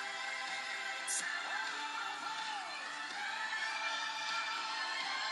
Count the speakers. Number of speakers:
zero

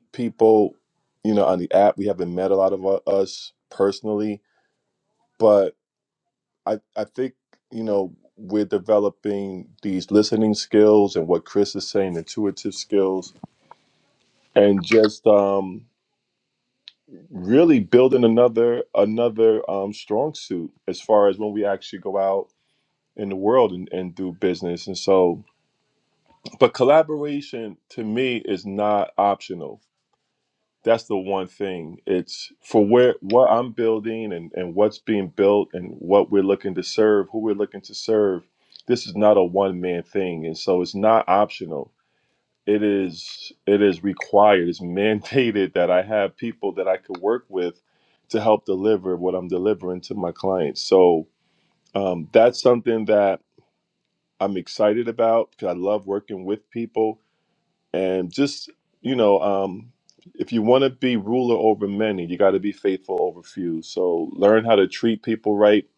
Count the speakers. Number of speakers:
one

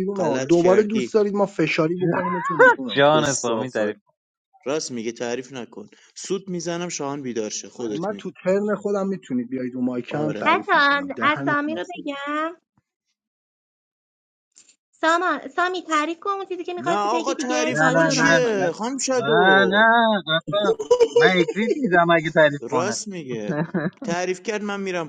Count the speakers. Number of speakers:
four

